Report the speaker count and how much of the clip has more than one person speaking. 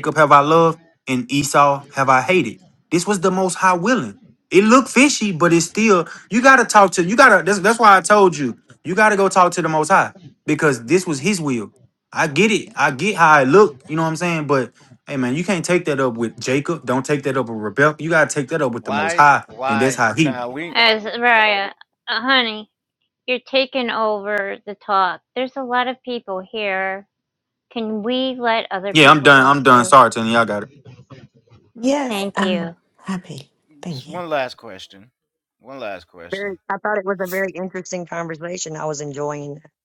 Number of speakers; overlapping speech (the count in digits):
5, about 9%